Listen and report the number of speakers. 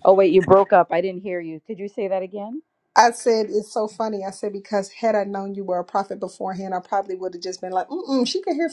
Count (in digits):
2